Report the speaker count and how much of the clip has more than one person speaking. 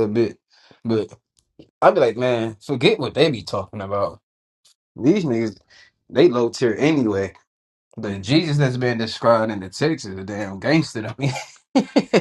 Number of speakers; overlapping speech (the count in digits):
1, no overlap